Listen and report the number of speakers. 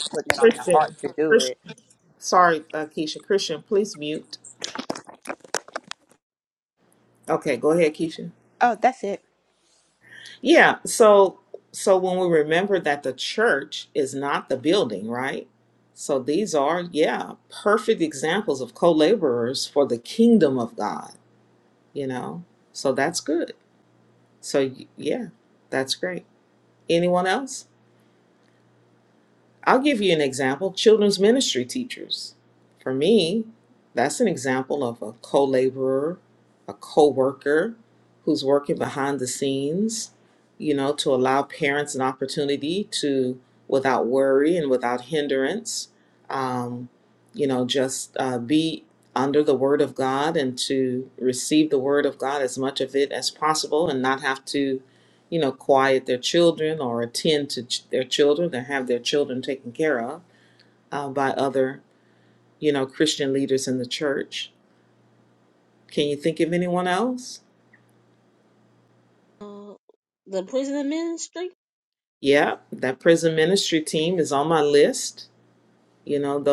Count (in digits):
3